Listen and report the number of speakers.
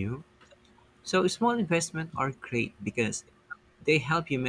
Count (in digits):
1